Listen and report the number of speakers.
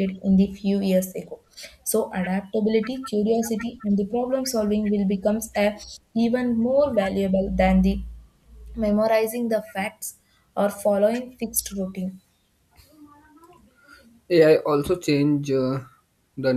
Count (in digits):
2